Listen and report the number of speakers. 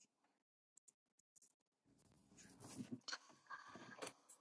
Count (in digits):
0